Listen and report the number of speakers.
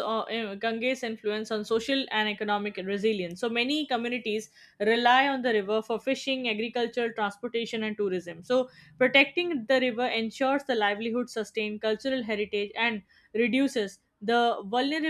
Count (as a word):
one